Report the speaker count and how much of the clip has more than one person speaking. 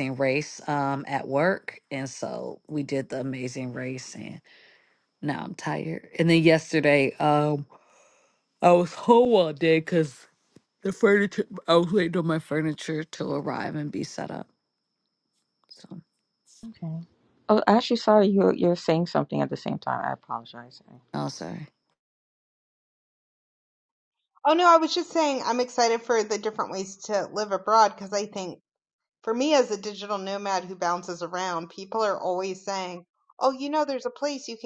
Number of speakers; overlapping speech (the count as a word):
three, no overlap